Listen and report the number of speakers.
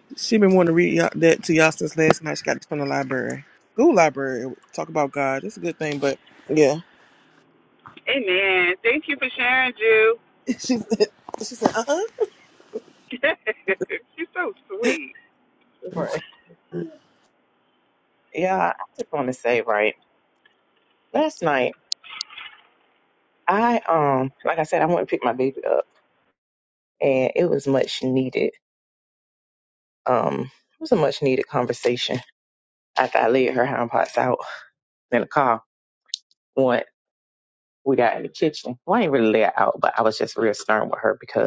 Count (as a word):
three